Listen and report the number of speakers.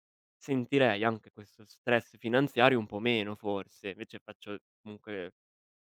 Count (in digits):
1